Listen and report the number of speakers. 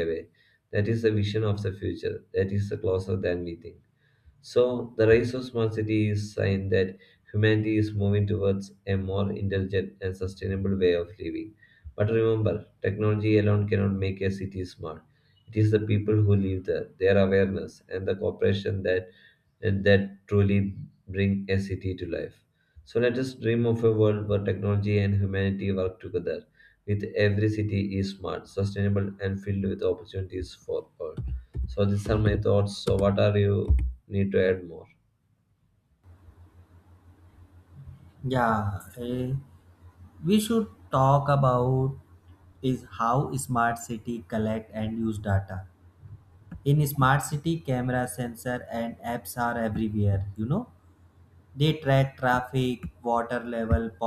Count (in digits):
2